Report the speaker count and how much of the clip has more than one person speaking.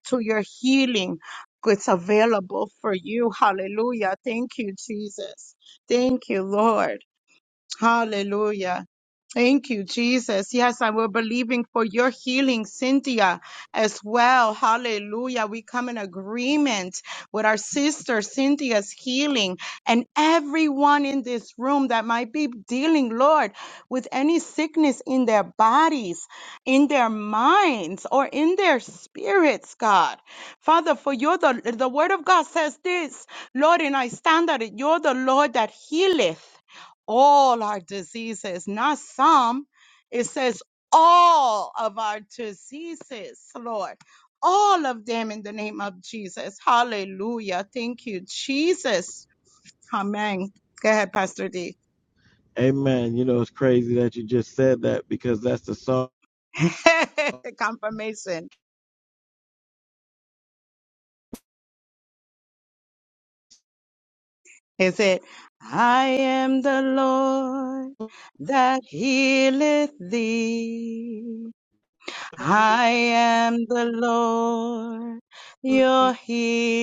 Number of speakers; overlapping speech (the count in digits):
2, no overlap